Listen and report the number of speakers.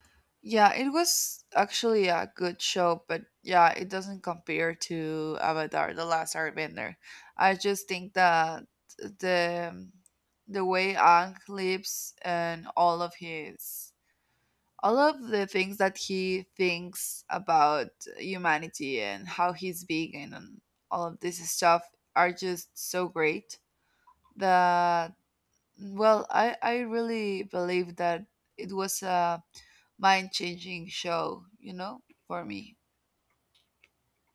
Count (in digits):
1